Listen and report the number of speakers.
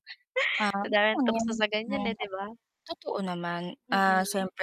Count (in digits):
2